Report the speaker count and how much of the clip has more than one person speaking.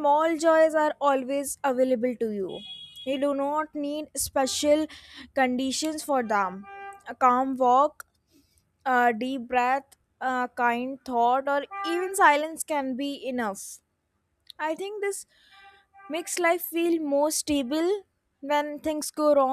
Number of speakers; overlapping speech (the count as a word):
one, no overlap